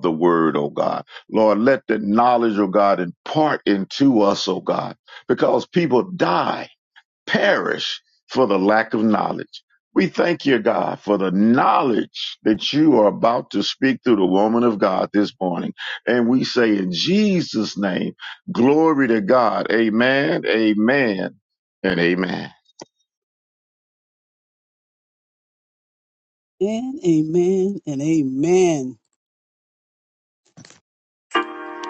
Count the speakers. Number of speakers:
2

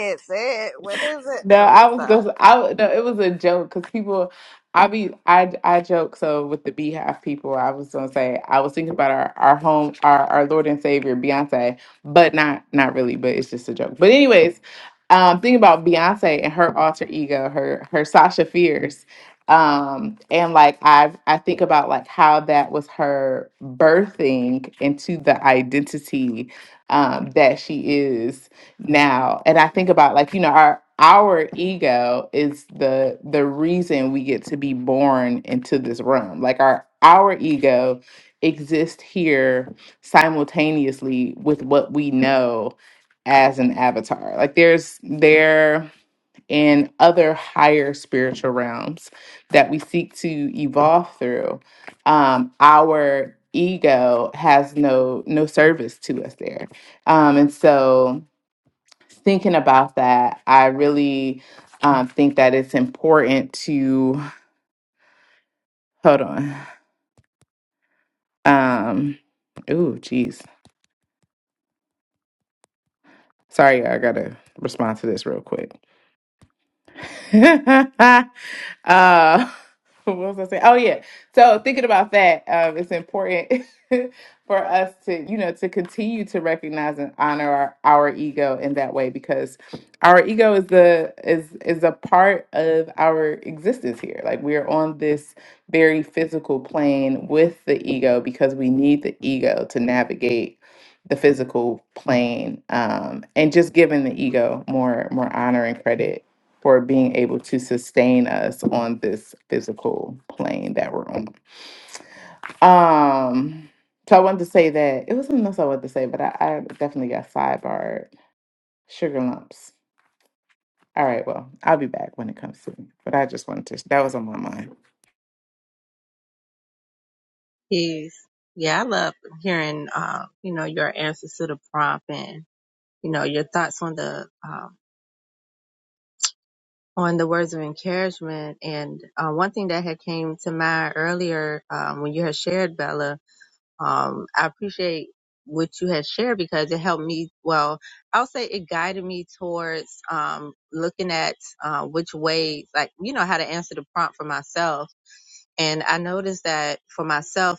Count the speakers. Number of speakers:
3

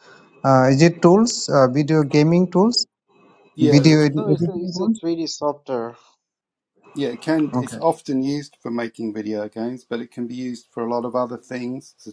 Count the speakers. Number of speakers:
3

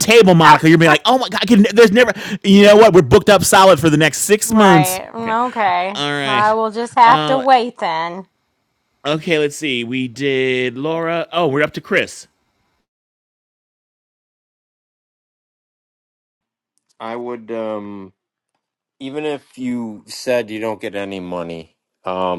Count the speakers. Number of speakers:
3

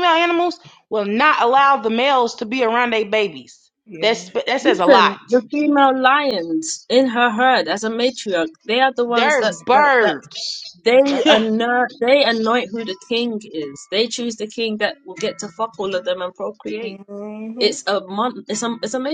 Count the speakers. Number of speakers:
3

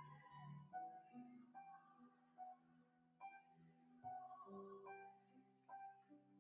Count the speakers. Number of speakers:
0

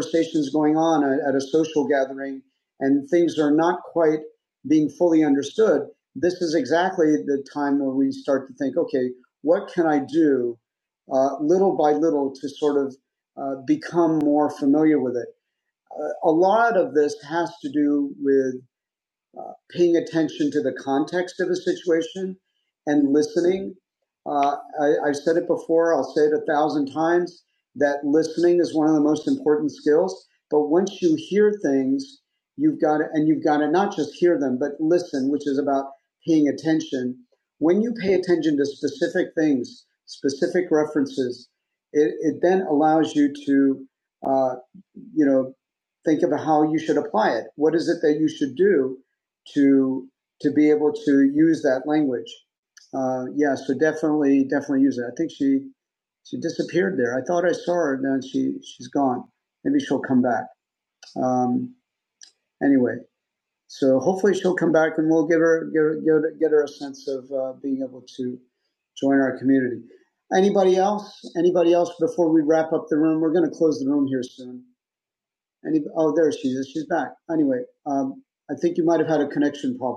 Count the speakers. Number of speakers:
1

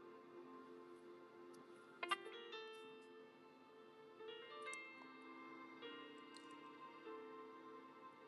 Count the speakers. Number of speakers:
0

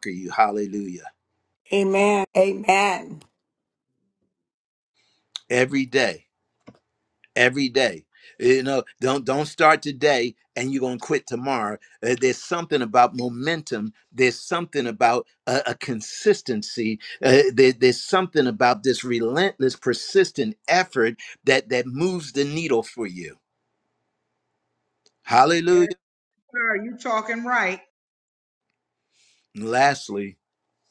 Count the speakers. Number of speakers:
3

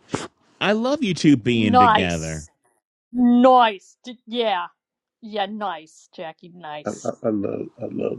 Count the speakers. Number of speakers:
3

